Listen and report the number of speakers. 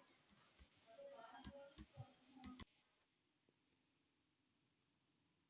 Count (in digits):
0